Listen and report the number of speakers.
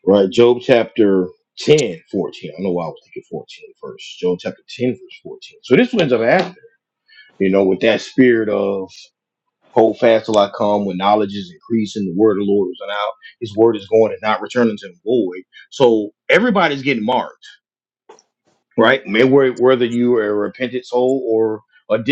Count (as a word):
one